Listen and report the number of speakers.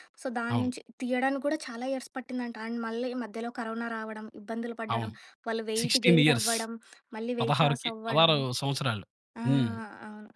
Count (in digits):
2